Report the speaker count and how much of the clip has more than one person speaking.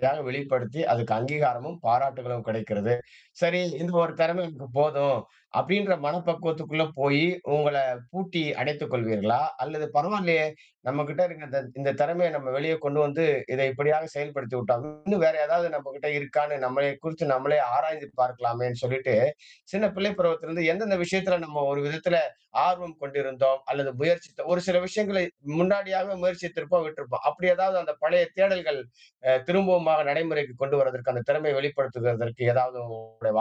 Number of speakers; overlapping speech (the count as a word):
one, no overlap